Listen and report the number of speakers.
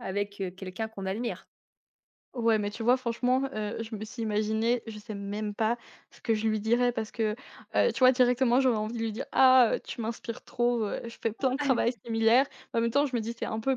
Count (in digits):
2